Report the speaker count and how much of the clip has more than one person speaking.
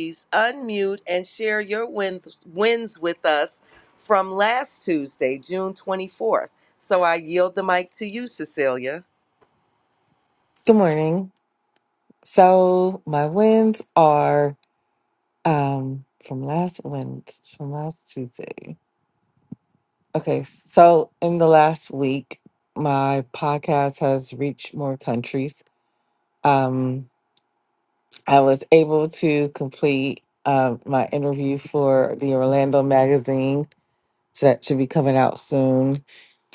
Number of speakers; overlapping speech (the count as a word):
two, no overlap